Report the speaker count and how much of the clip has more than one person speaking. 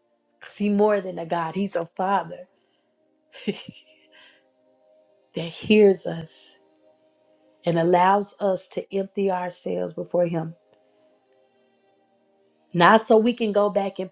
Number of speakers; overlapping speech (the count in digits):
1, no overlap